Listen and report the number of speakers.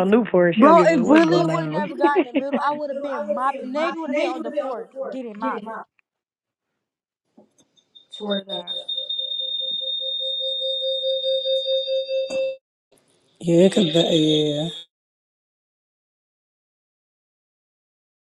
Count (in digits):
3